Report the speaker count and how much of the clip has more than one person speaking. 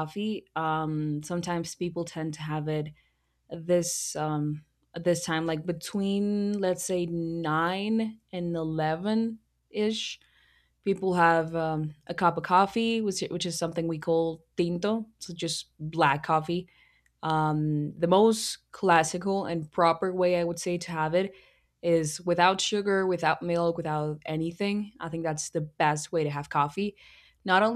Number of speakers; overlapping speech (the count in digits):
1, no overlap